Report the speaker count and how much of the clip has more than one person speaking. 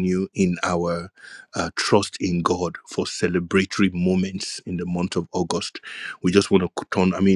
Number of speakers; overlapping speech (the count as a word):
one, no overlap